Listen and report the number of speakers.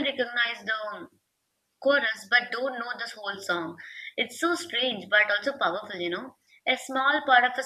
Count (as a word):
one